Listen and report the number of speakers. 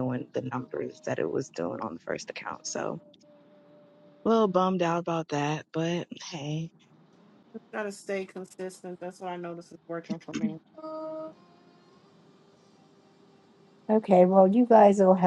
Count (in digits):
3